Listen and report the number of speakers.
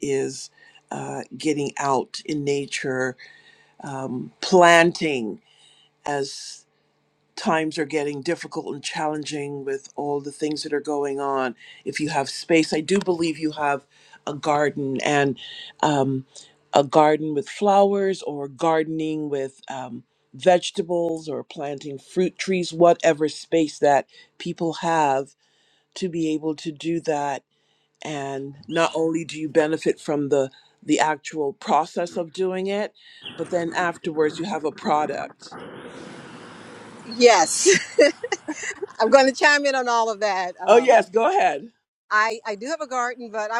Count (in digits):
2